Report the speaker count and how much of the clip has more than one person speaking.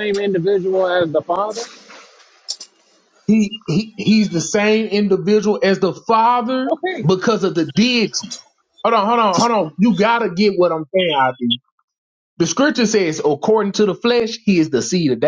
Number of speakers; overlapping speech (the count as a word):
two, about 3%